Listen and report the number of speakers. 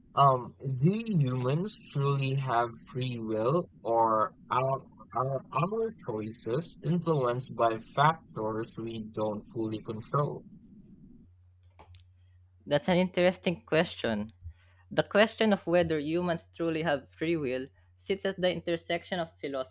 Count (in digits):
2